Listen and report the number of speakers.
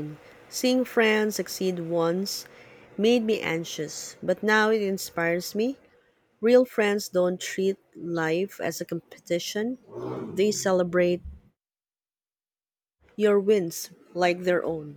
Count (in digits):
1